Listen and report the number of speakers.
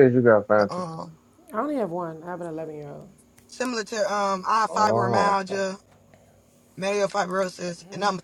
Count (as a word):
three